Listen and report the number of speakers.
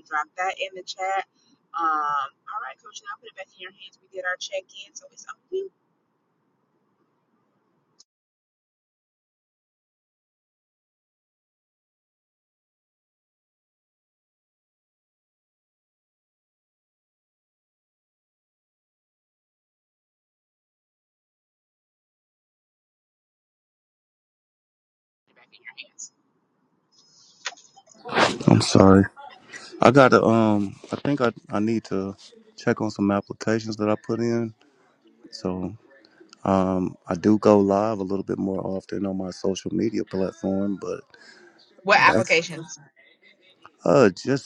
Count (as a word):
two